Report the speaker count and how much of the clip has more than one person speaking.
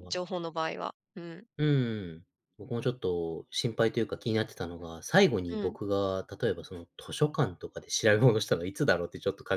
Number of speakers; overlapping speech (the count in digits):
2, about 4%